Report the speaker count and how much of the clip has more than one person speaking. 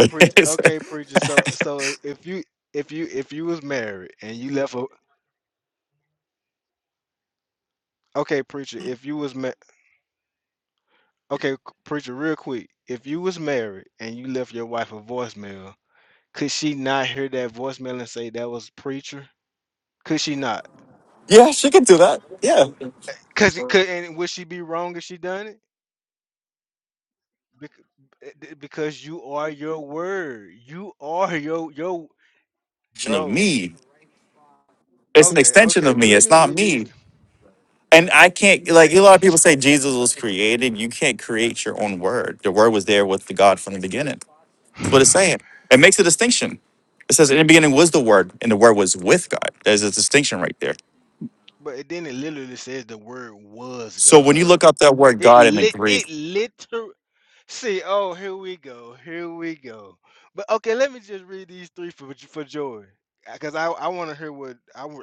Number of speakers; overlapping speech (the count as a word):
two, about 7%